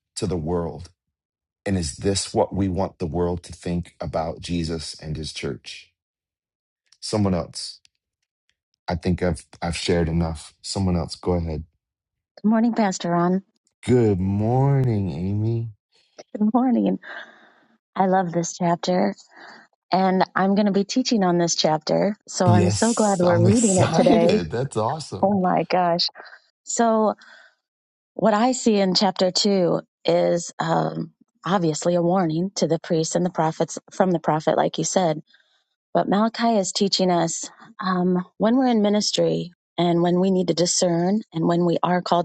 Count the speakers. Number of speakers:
2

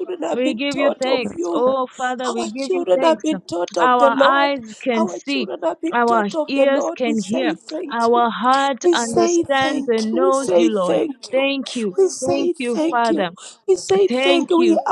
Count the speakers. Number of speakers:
2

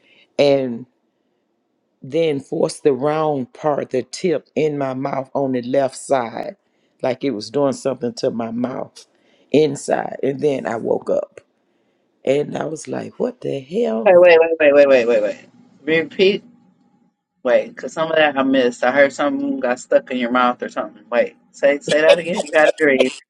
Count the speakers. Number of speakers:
2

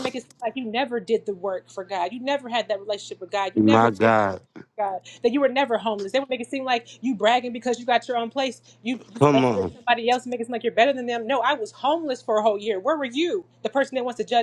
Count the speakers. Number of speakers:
2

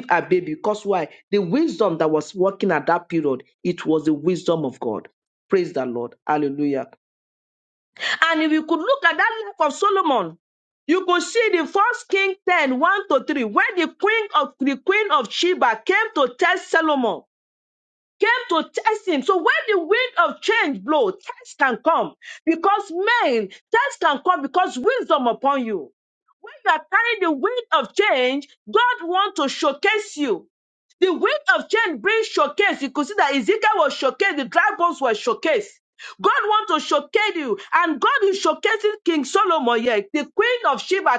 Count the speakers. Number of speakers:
1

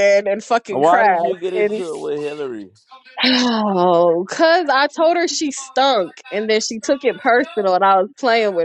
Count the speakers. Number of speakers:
2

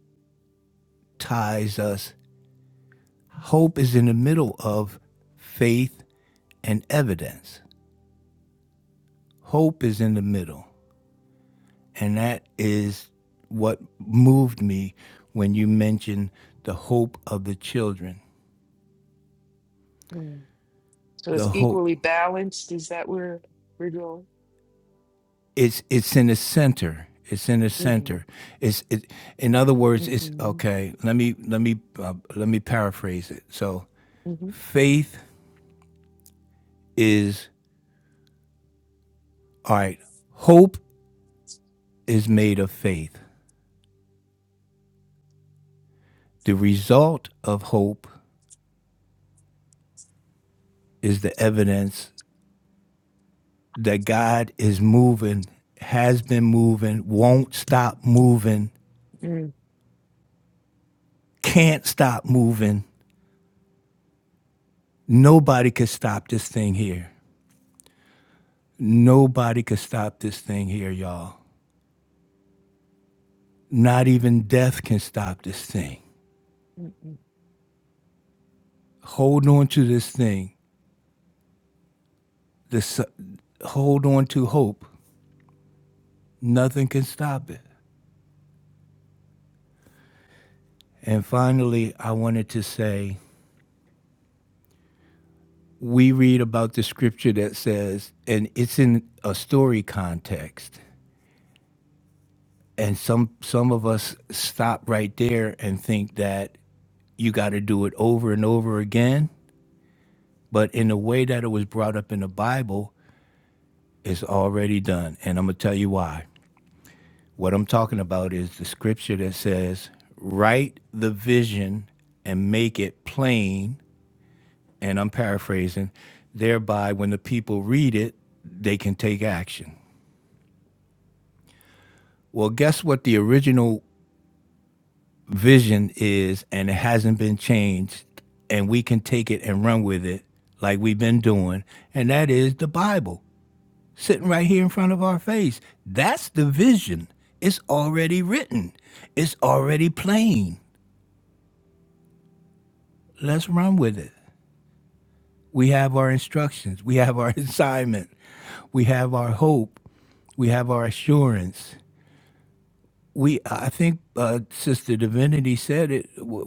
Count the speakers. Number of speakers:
2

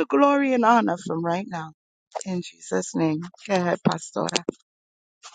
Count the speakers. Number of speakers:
1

